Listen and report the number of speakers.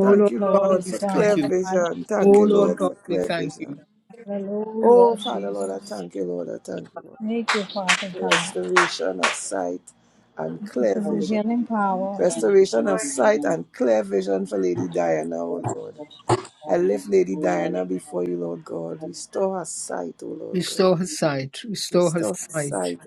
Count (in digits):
3